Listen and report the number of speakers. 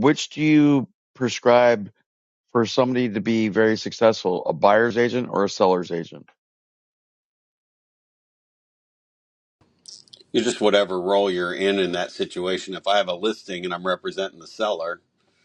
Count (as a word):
two